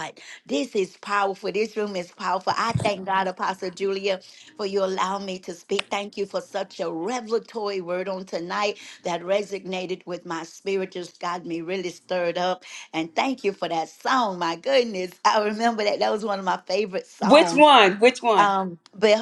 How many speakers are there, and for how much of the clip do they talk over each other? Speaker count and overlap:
2, about 3%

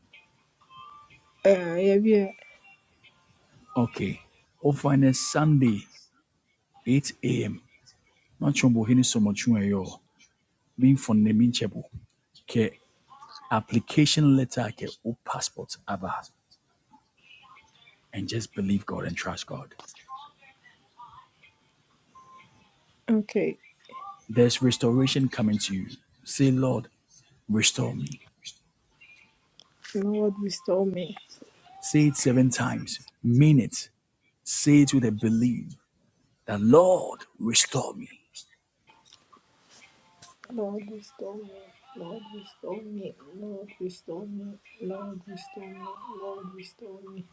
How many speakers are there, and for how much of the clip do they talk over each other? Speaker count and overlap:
2, no overlap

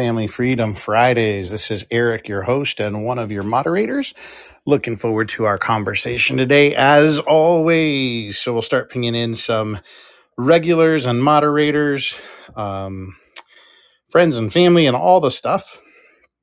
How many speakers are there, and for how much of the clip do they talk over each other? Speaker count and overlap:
1, no overlap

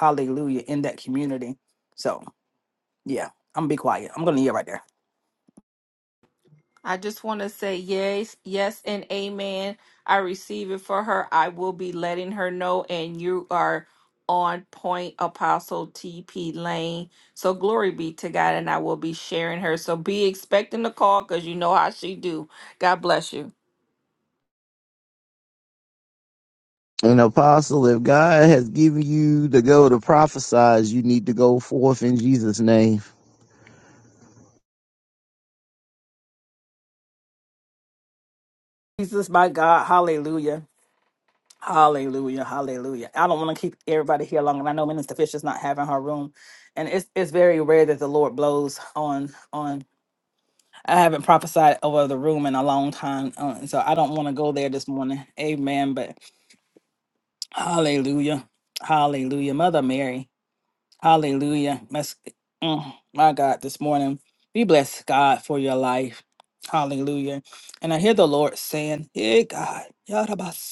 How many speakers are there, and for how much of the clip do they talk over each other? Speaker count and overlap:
3, no overlap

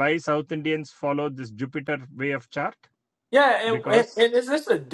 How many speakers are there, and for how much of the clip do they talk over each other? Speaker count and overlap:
2, about 7%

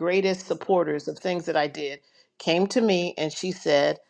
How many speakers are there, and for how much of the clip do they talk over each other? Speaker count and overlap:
1, no overlap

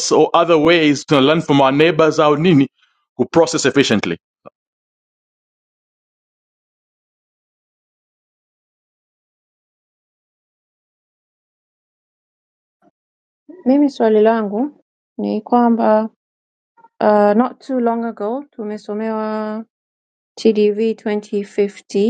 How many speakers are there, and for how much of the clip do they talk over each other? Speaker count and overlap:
2, no overlap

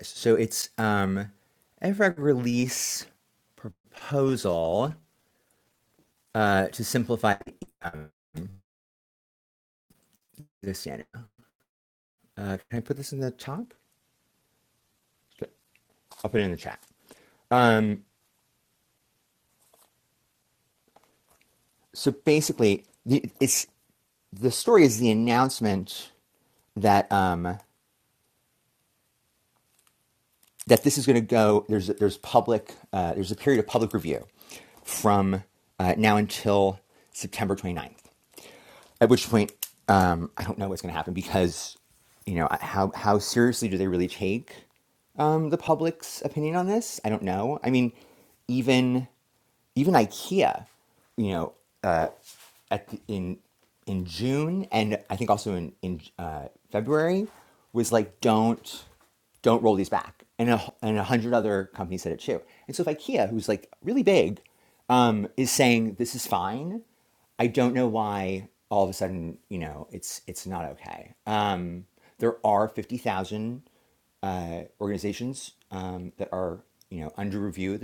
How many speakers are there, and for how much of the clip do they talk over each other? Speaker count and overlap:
1, no overlap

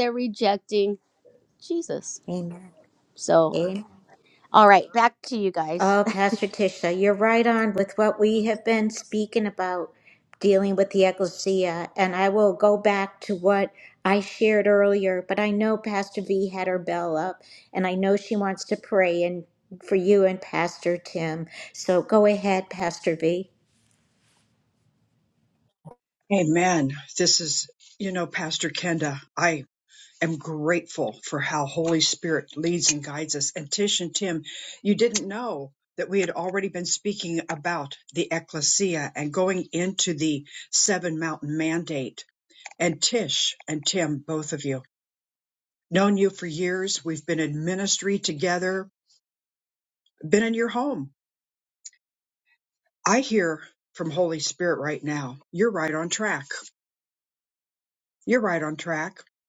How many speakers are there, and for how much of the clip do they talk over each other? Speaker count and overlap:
3, under 1%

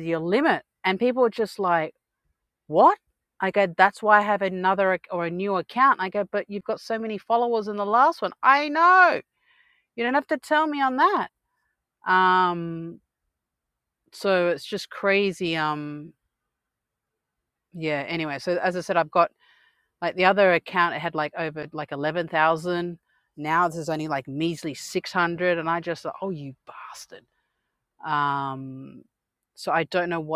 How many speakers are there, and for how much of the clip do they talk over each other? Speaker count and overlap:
1, no overlap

